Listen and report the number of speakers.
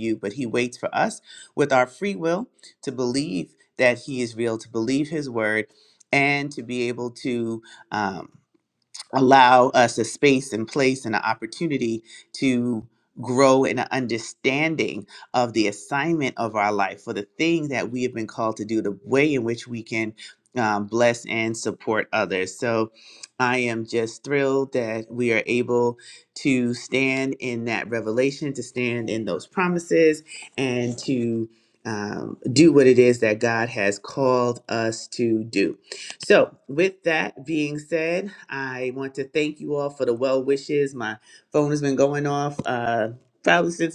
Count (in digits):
1